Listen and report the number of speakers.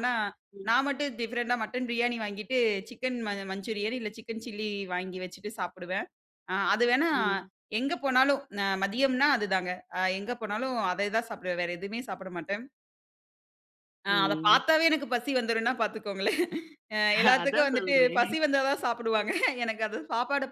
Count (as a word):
two